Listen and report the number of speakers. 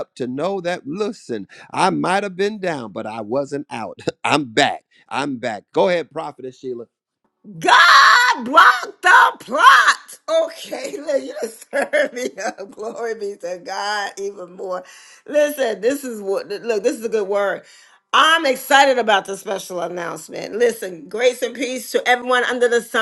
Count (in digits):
2